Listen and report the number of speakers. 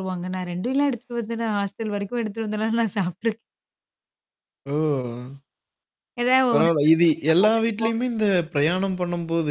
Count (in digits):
2